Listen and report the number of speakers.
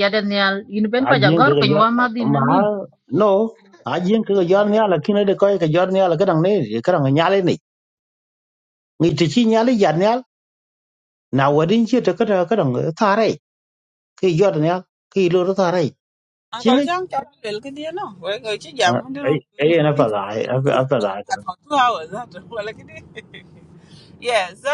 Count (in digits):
3